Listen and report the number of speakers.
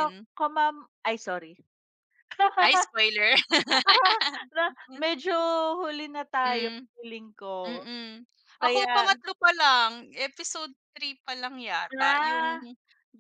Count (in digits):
2